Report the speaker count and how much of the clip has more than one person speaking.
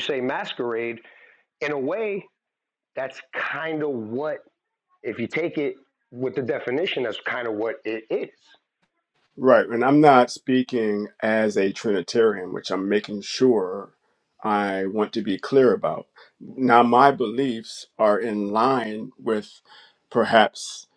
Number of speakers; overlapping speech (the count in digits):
2, no overlap